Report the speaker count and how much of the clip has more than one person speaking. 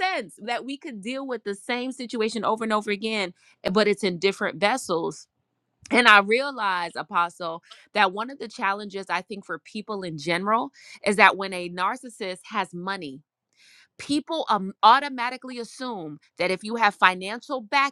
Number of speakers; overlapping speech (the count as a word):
one, no overlap